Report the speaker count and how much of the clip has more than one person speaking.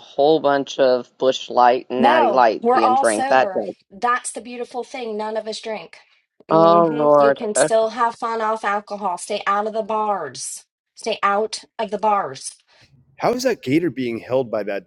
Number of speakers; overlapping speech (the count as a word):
three, about 19%